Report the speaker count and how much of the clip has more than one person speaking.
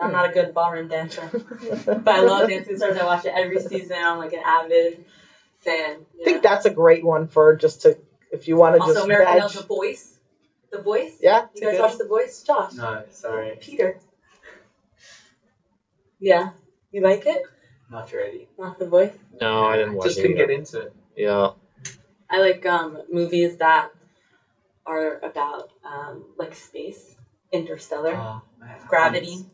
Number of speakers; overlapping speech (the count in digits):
4, about 11%